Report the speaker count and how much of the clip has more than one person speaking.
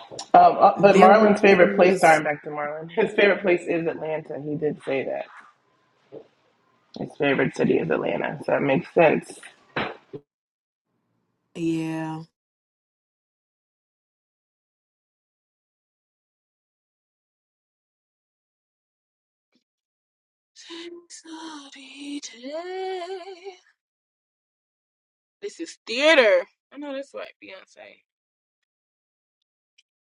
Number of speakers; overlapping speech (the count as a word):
three, about 4%